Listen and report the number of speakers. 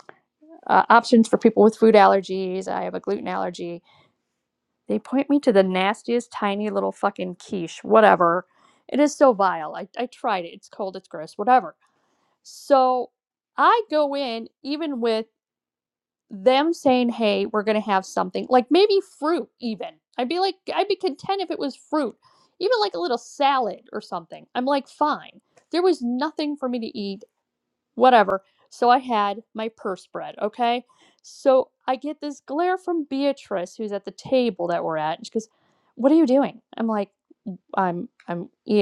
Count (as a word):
one